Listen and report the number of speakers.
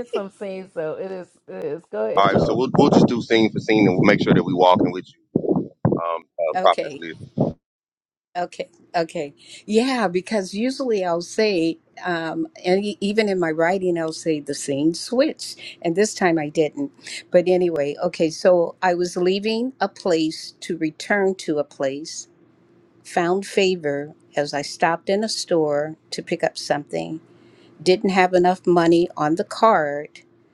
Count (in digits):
3